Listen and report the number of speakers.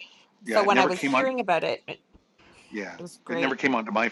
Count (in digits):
2